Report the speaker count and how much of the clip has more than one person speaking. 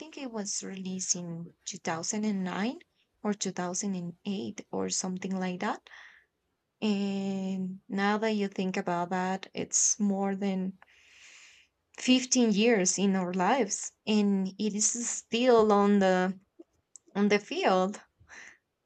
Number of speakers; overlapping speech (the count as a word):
one, no overlap